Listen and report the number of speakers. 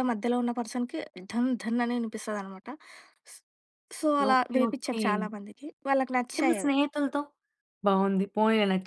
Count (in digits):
2